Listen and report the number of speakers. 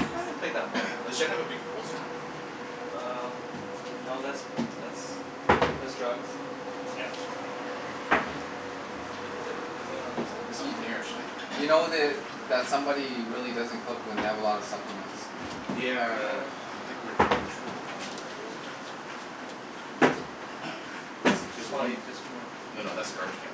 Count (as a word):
three